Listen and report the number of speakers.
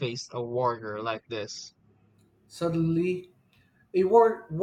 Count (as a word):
two